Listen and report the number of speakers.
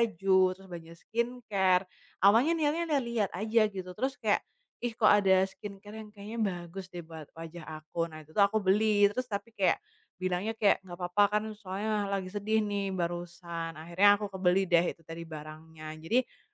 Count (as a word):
one